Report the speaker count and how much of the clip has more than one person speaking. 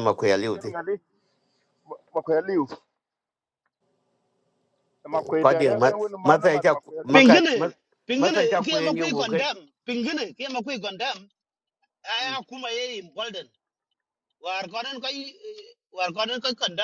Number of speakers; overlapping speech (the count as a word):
three, about 18%